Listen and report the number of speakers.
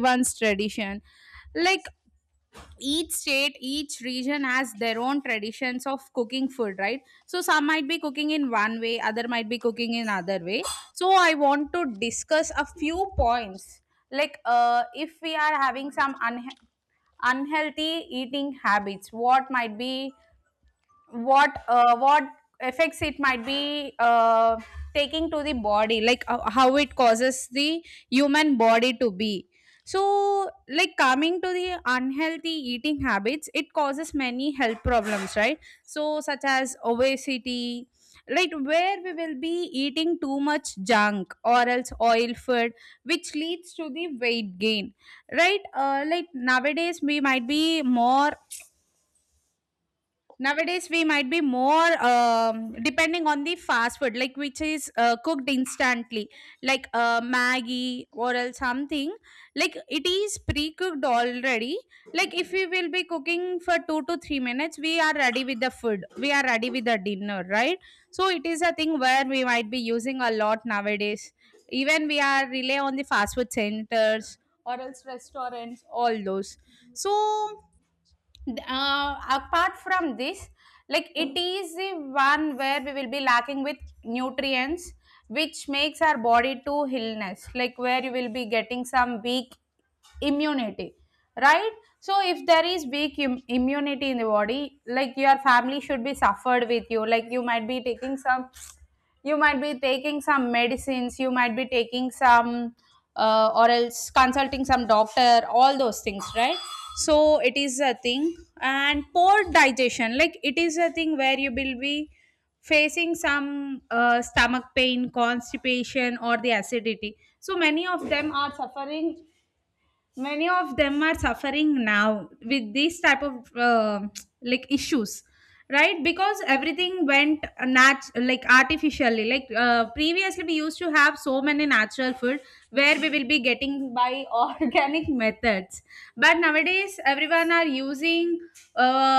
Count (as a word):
one